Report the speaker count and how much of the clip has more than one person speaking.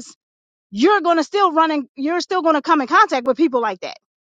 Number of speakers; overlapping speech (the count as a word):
one, no overlap